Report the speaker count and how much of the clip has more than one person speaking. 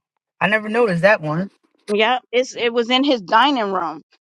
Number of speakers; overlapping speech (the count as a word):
two, no overlap